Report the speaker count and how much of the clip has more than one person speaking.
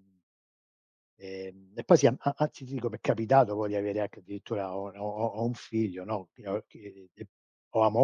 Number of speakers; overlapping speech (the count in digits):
1, no overlap